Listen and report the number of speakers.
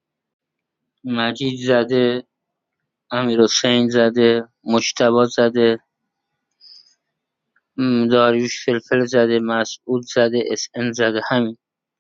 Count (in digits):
1